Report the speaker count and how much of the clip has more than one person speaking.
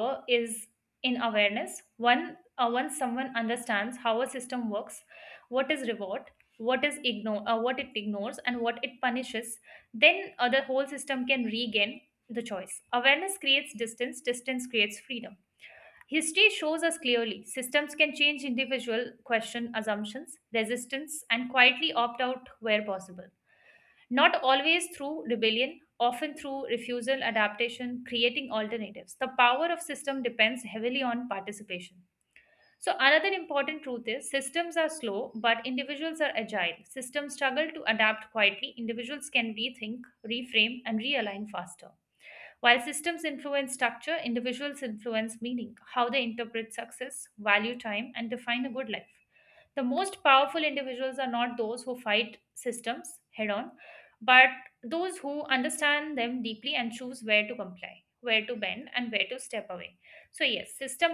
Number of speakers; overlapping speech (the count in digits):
1, no overlap